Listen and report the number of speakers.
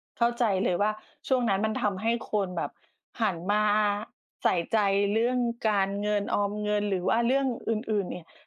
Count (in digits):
1